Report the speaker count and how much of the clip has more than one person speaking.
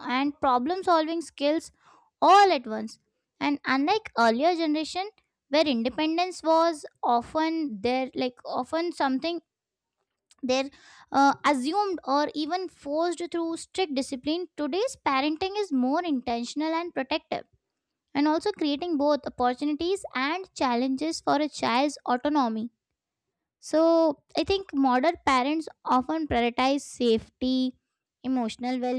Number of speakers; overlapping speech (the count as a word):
one, no overlap